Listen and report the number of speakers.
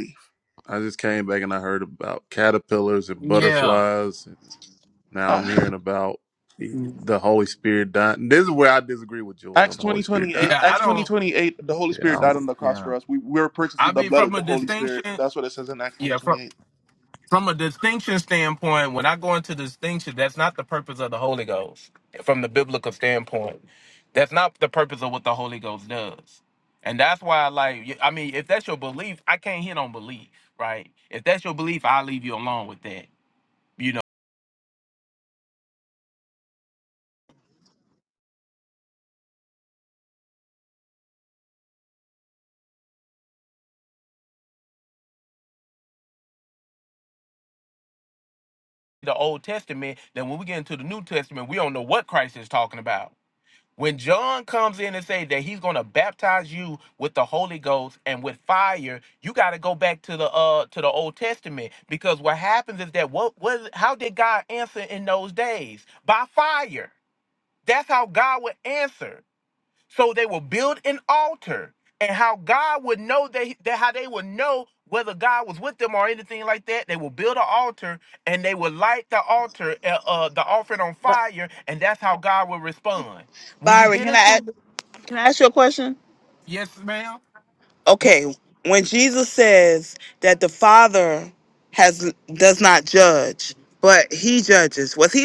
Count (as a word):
four